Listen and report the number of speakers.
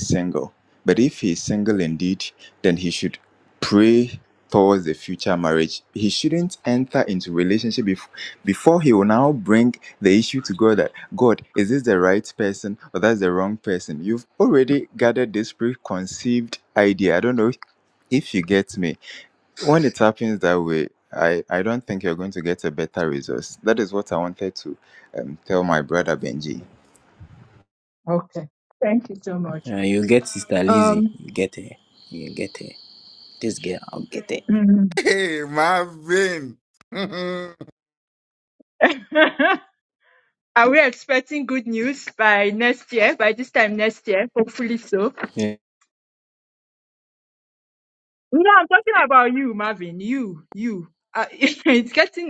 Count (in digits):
4